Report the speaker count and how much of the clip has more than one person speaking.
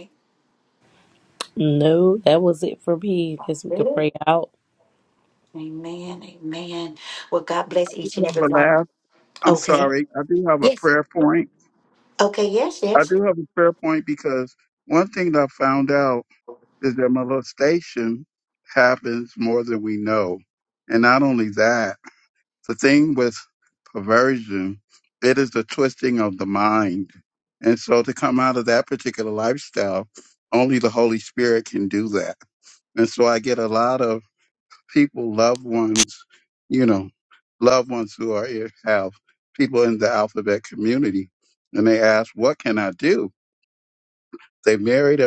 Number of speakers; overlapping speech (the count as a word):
three, about 4%